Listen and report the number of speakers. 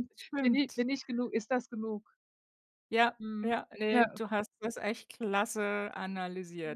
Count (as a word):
two